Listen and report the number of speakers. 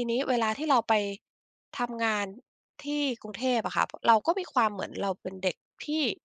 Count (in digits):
1